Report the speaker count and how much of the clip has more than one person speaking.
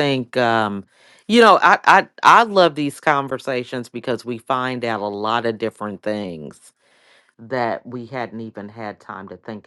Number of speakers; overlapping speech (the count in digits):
1, no overlap